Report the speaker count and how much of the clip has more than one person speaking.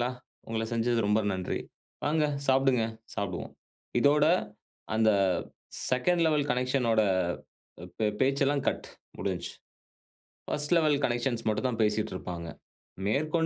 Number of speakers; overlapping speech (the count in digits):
1, no overlap